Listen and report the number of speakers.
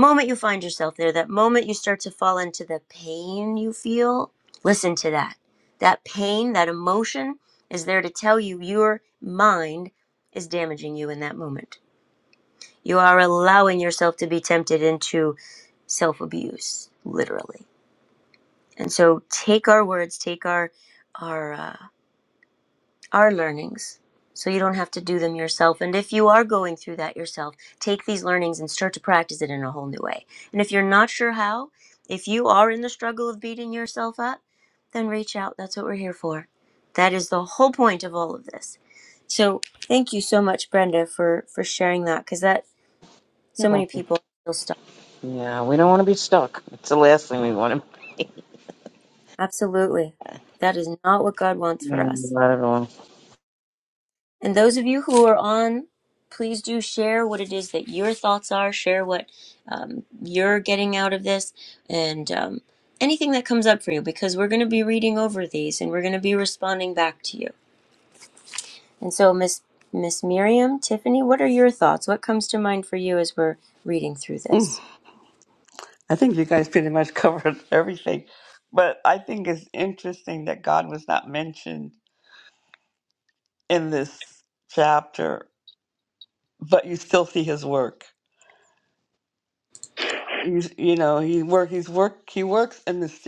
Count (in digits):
3